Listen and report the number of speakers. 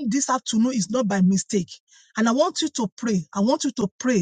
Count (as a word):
one